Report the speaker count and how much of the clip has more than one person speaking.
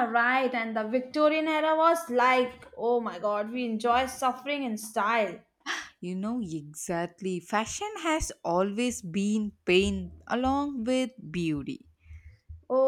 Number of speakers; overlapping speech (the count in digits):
2, no overlap